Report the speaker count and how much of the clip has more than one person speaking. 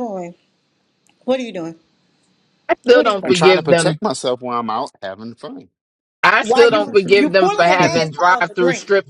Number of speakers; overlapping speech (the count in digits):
3, about 38%